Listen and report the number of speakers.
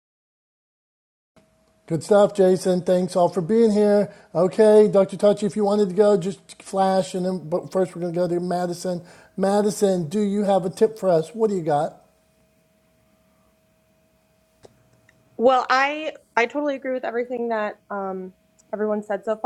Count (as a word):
two